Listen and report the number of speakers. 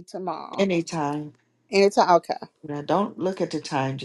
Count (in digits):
2